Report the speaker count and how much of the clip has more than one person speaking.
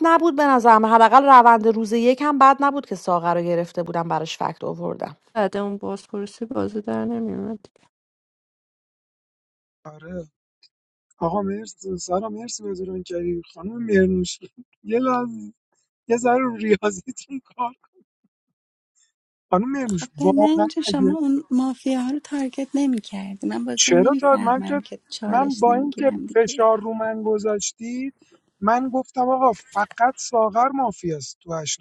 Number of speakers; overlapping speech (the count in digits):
4, about 12%